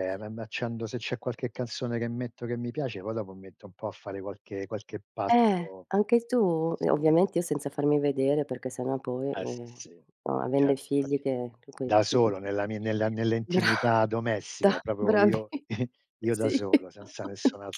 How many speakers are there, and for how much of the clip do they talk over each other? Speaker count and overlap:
two, about 23%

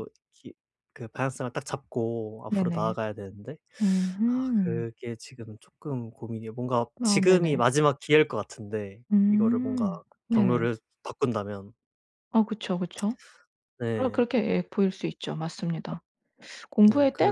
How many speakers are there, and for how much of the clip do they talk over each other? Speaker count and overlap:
two, about 17%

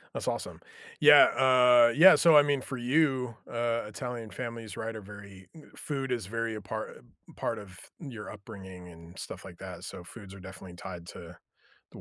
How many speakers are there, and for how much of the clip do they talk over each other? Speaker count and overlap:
one, no overlap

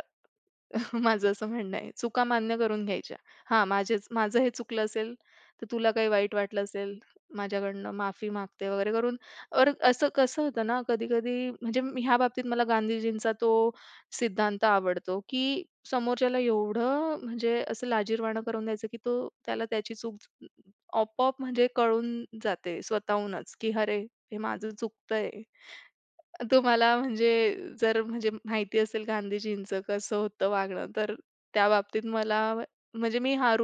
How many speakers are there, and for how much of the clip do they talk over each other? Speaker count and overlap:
one, no overlap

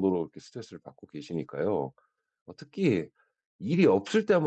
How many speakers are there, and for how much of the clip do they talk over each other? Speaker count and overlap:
one, no overlap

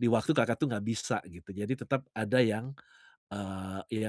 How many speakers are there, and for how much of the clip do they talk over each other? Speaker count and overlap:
one, no overlap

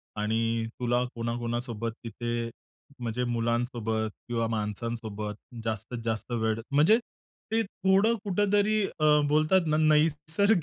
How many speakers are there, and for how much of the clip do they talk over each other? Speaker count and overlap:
one, no overlap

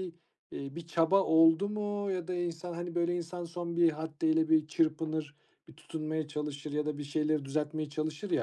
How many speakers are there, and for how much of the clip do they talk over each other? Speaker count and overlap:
one, no overlap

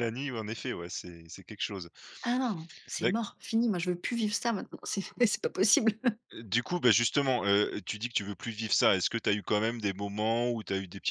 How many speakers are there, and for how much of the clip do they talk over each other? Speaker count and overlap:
two, about 1%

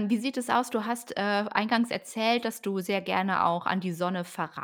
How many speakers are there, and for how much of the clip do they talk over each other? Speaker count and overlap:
one, no overlap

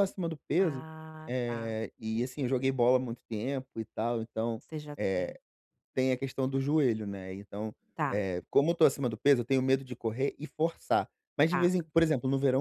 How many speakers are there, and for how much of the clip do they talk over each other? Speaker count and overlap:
two, about 9%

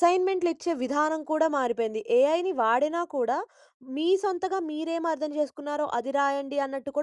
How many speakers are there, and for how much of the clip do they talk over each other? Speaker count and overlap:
one, no overlap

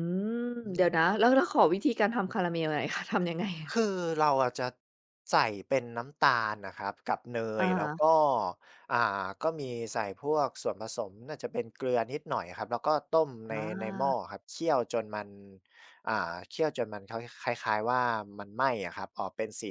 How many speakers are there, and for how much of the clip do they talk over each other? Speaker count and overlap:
two, about 5%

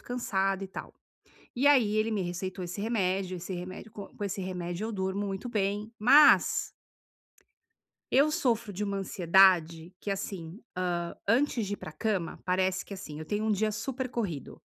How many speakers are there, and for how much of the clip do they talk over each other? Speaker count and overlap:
one, no overlap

